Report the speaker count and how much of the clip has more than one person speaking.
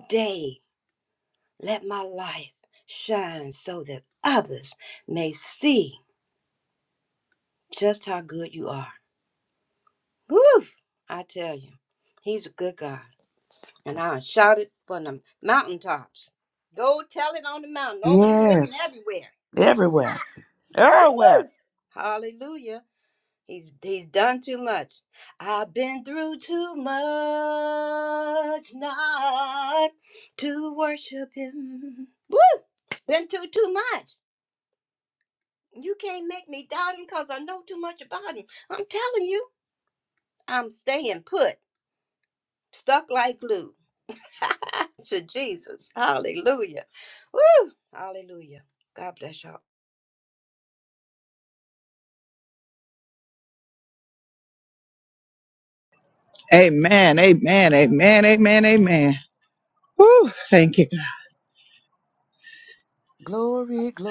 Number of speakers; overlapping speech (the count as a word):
three, about 1%